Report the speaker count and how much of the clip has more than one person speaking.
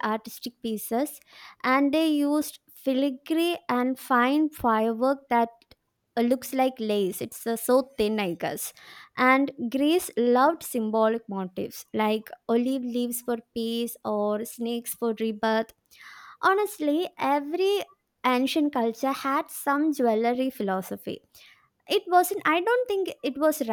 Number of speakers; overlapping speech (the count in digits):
1, no overlap